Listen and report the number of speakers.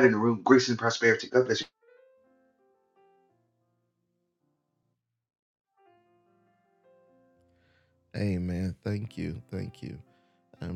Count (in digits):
2